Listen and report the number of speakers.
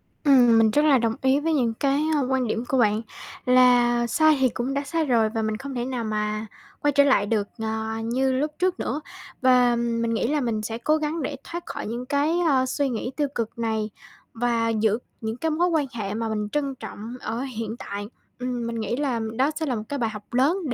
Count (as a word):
one